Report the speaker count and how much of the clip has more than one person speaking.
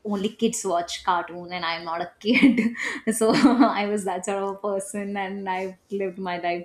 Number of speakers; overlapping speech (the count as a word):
one, no overlap